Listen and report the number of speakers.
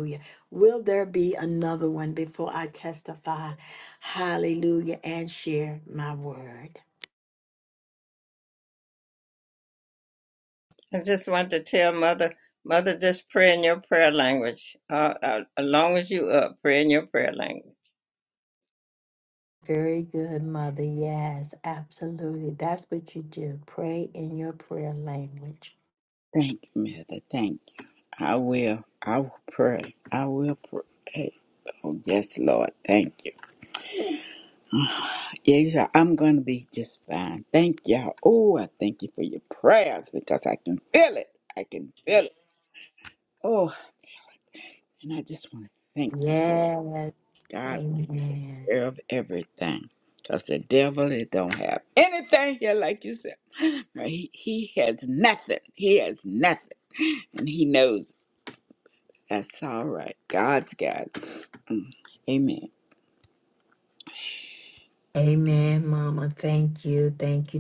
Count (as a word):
three